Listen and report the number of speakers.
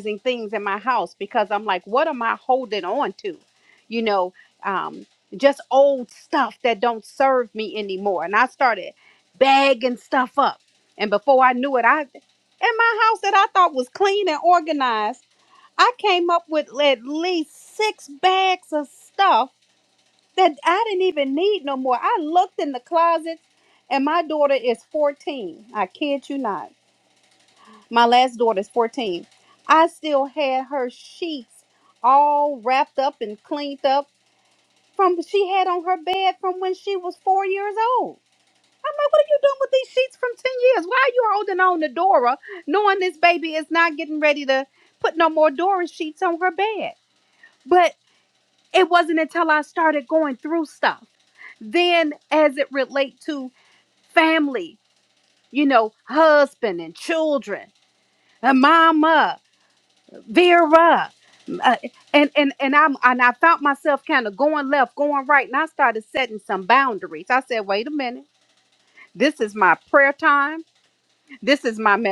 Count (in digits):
1